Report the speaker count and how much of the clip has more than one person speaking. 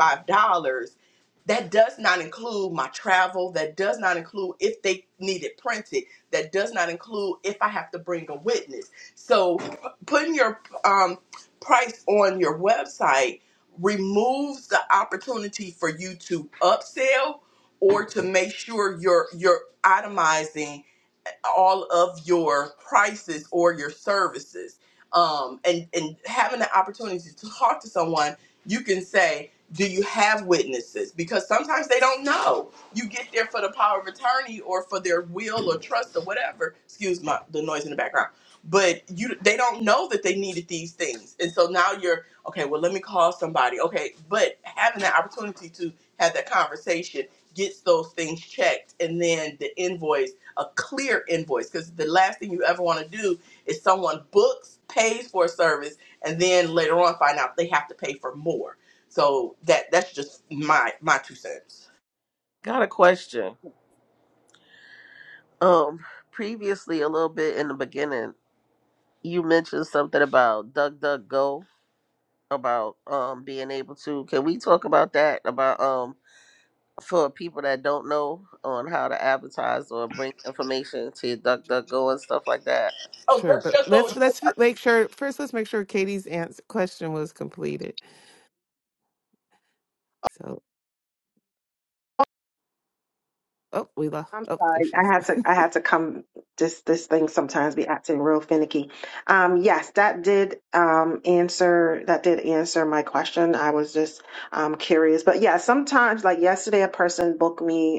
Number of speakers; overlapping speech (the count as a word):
four, about 1%